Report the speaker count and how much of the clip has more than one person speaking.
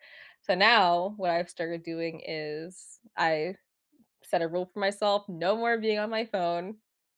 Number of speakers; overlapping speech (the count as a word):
one, no overlap